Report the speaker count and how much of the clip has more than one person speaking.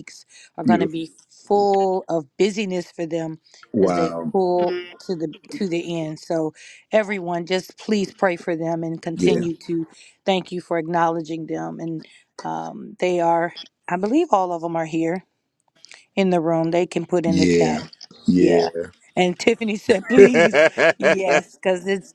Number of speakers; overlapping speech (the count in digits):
2, about 11%